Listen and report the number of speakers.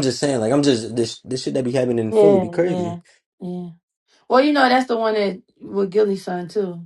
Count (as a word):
two